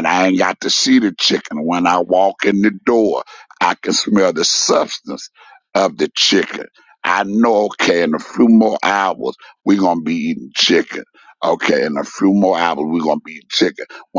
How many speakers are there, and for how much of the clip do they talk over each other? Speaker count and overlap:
one, no overlap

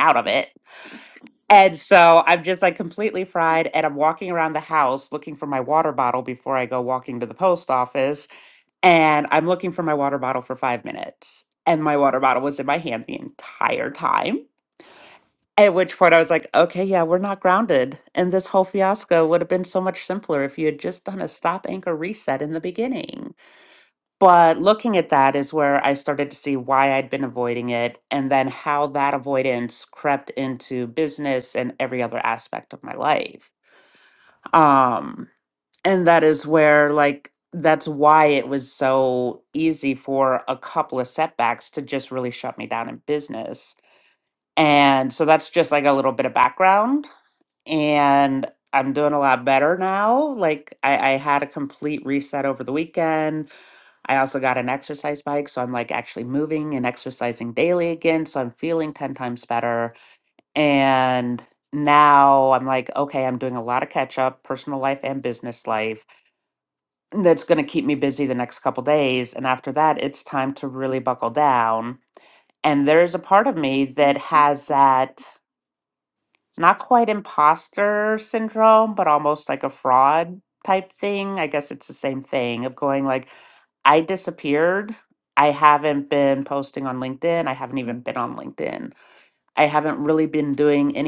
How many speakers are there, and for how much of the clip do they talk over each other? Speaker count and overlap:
one, no overlap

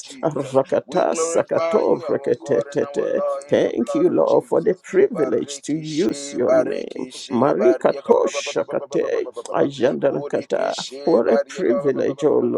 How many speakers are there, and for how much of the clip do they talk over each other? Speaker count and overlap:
two, about 81%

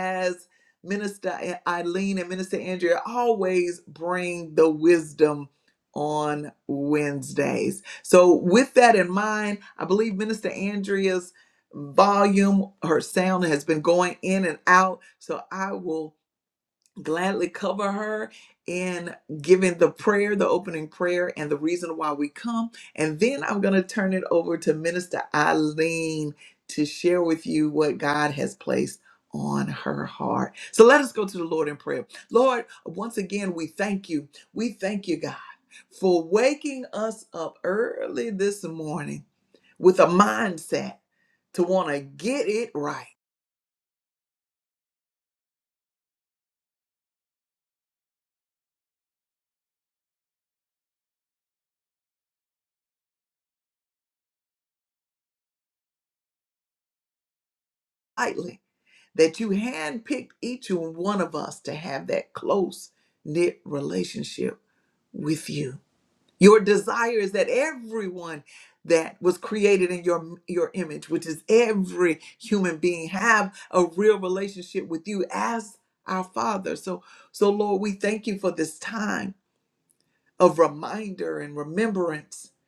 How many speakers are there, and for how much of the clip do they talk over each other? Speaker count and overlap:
one, no overlap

